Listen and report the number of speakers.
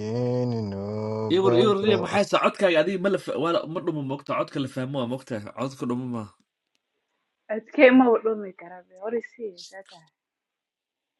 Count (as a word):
three